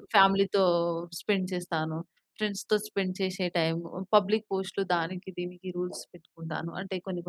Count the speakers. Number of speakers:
one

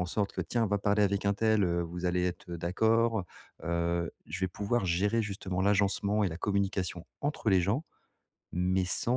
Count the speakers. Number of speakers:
one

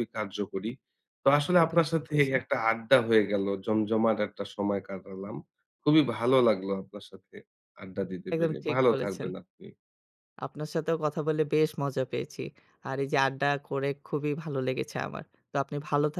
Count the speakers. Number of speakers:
two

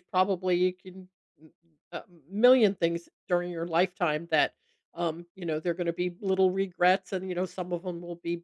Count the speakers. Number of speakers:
one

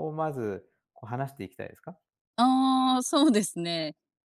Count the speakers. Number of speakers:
two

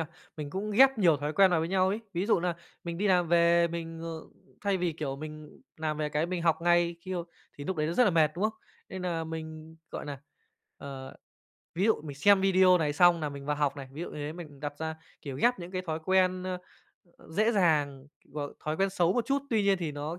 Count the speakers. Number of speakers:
one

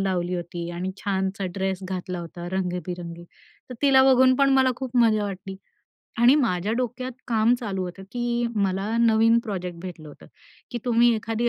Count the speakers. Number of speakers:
one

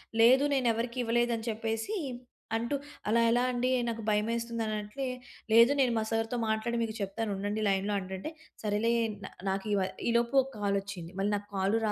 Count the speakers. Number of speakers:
one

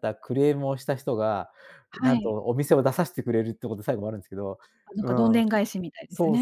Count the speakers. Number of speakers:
two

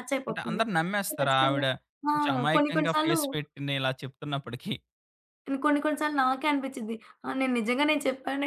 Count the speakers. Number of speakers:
two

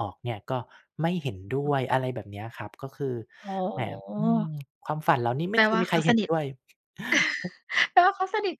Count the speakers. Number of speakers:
two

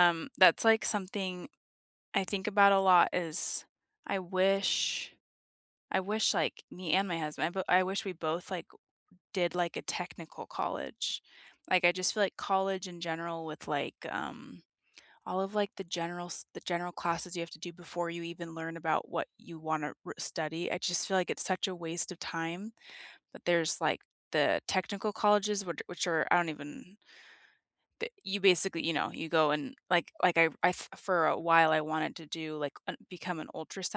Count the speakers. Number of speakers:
one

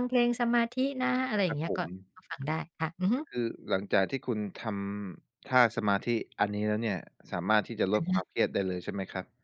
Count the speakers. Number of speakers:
two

